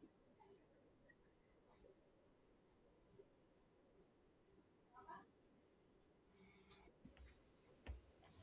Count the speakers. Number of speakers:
0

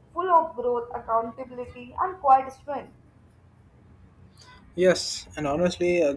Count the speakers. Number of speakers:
2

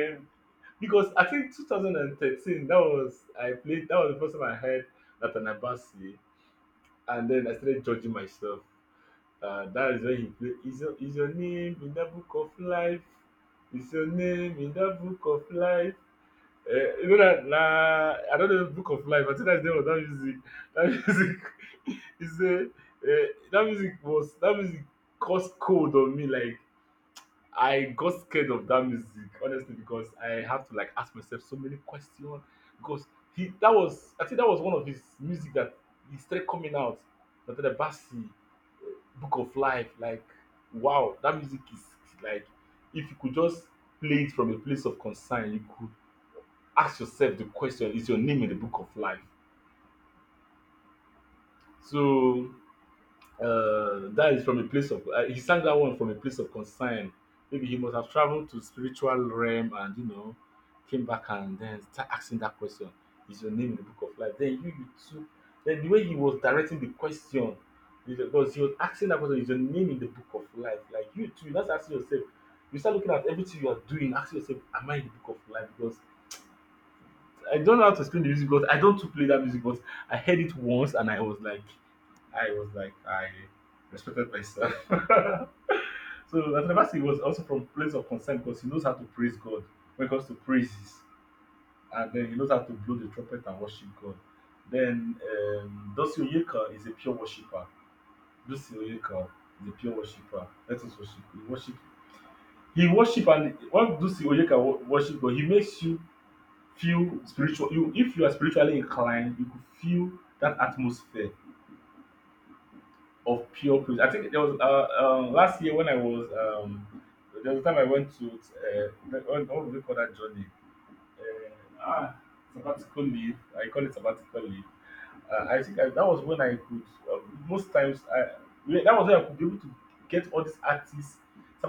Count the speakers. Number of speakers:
1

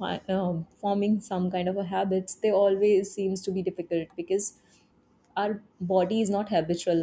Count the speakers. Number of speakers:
1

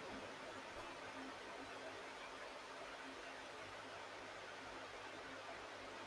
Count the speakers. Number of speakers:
0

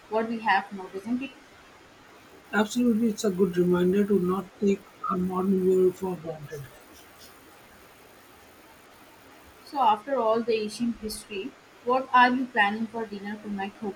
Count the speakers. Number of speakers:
2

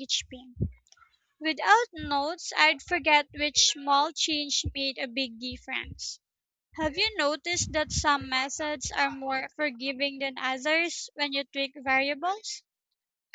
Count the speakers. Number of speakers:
1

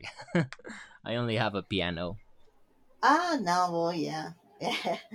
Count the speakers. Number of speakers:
2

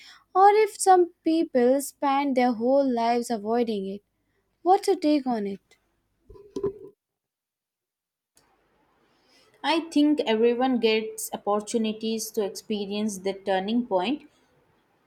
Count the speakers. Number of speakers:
2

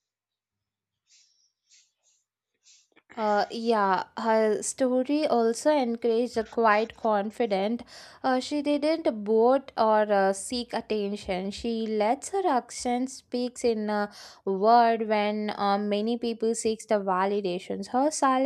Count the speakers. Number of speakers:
1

